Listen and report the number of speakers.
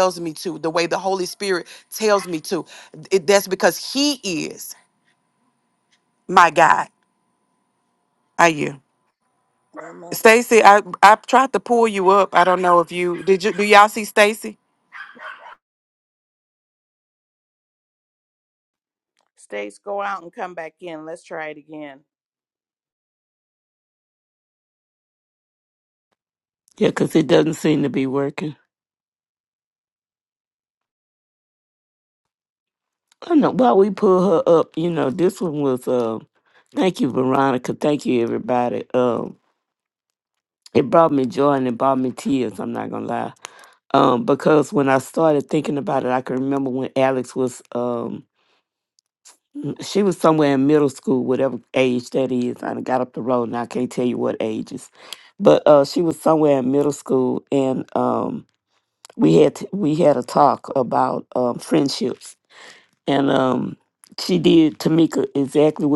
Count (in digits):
3